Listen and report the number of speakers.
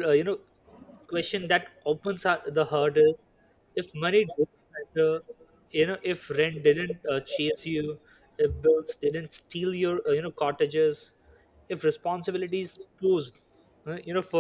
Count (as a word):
one